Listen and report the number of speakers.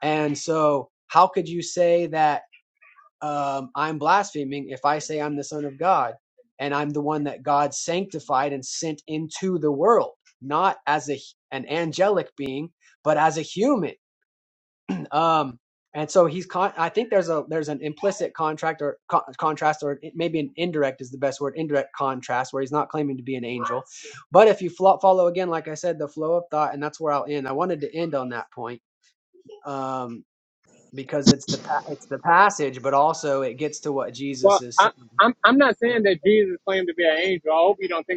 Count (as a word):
two